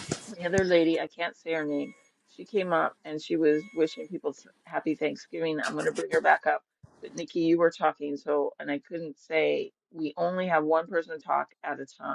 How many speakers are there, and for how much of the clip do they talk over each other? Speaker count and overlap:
one, no overlap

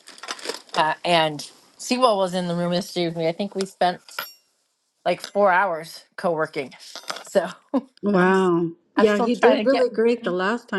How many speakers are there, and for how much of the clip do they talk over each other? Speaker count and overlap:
two, about 11%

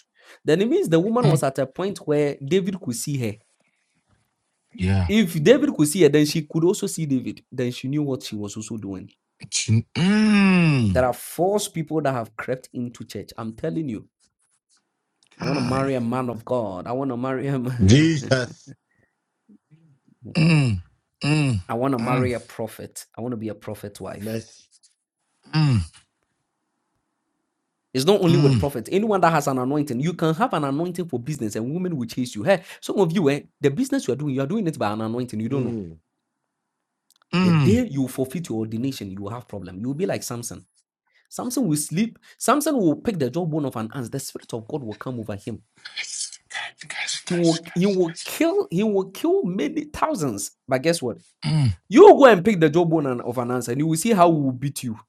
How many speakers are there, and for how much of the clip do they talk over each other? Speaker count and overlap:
three, about 4%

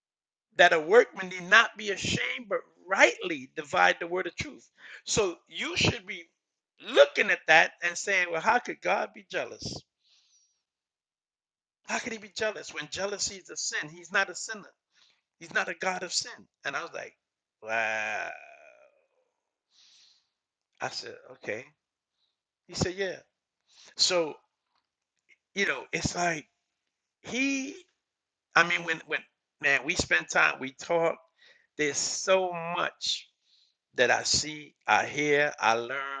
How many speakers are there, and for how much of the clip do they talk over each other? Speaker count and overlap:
one, no overlap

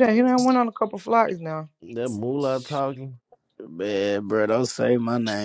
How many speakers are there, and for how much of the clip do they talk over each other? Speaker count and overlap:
three, no overlap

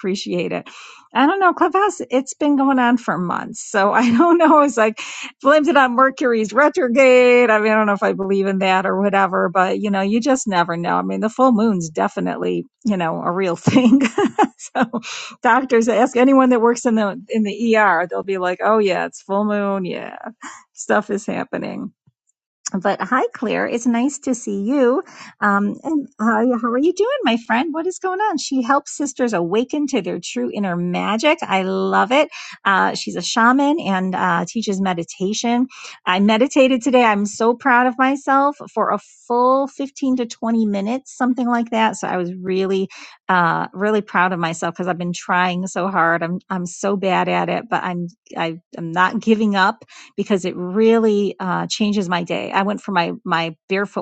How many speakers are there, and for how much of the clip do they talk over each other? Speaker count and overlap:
one, no overlap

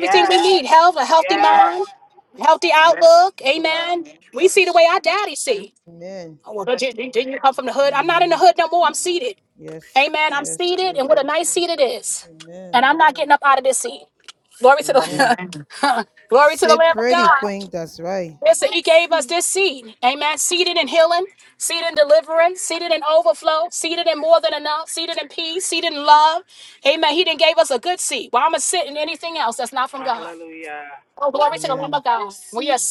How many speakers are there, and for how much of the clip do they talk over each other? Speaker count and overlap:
three, about 16%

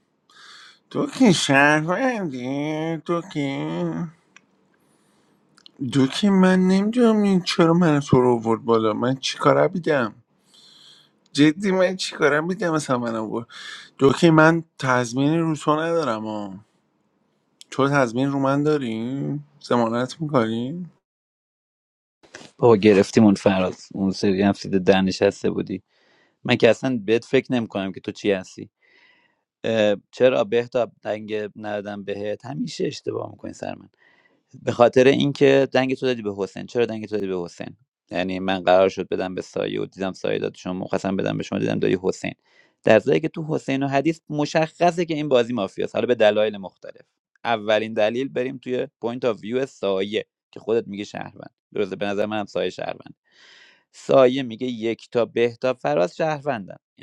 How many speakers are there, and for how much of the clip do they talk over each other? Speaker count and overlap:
two, no overlap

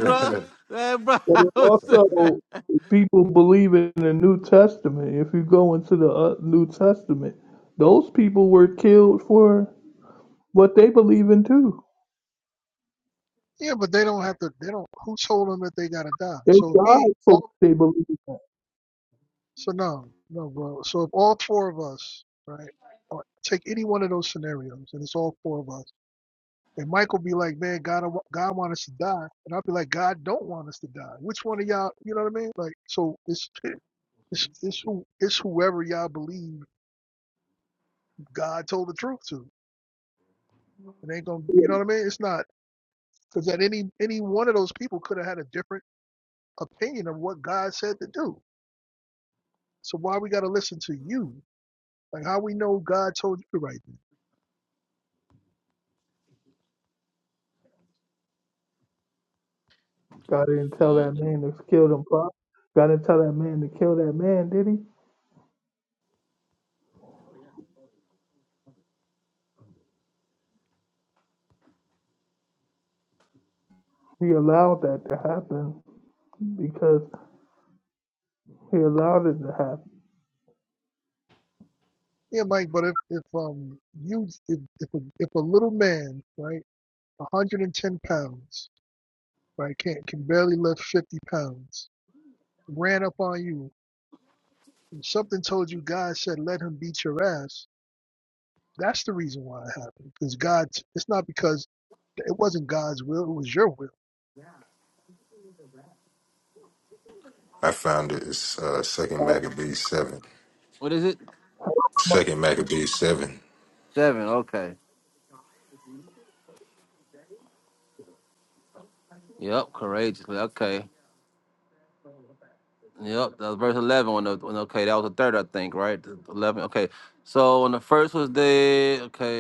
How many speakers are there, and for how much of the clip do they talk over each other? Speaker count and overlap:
four, about 2%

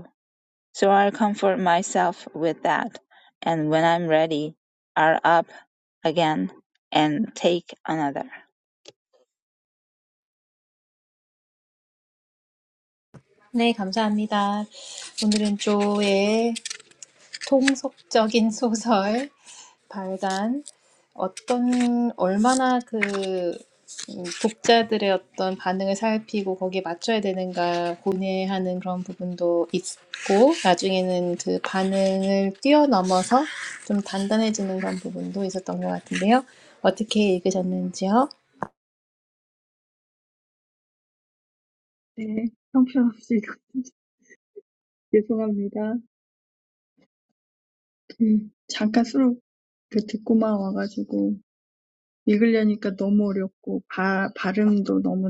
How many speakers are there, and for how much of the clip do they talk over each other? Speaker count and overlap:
three, no overlap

